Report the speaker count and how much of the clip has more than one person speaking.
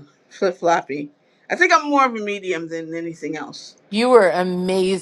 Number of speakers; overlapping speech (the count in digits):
2, no overlap